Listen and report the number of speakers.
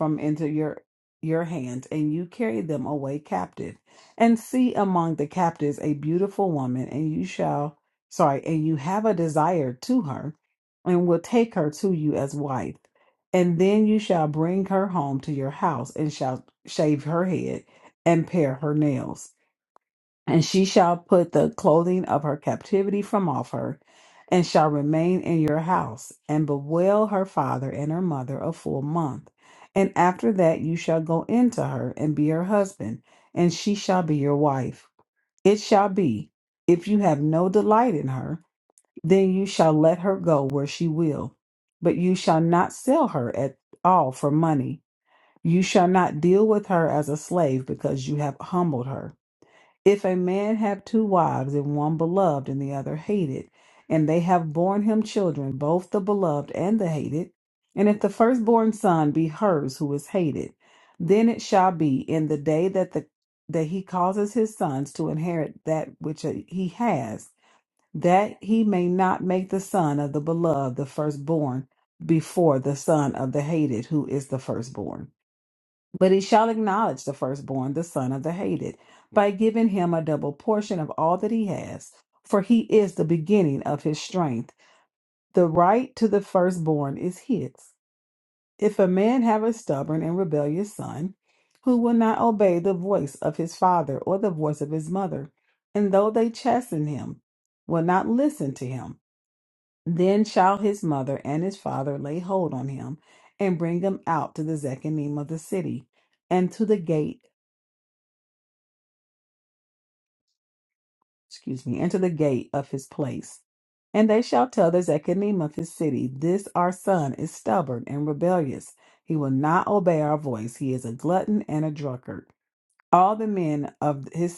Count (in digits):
1